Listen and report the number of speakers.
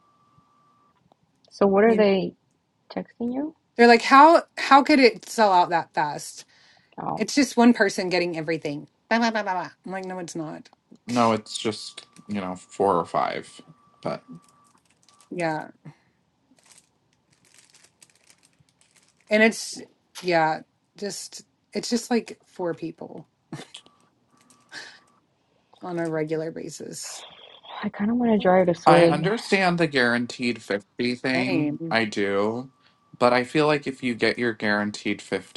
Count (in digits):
3